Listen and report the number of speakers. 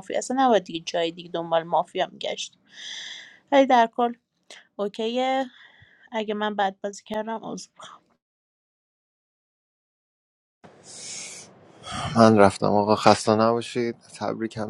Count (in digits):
2